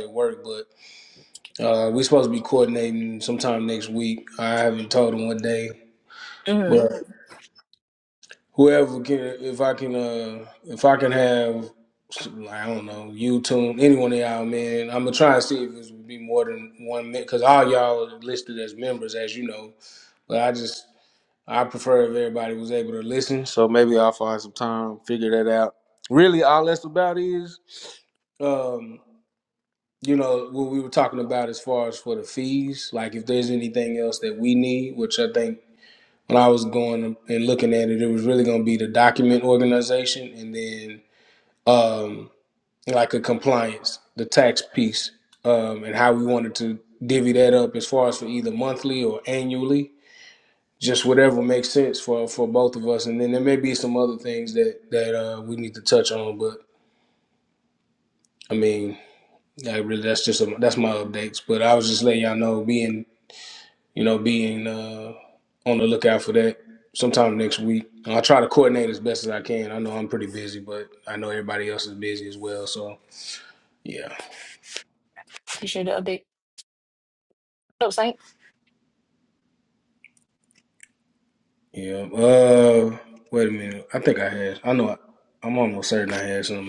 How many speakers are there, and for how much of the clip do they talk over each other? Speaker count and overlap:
2, under 1%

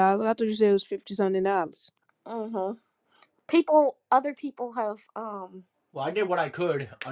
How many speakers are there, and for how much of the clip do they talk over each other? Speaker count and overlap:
3, no overlap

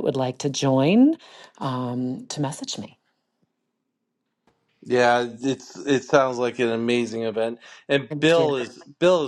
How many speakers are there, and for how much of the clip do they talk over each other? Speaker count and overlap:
2, about 5%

